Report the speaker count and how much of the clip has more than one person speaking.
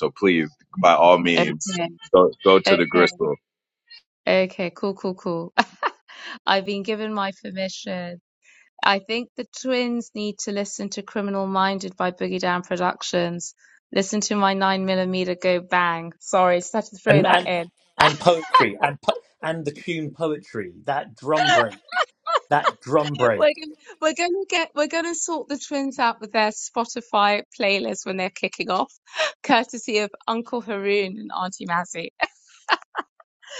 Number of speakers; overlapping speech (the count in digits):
3, about 4%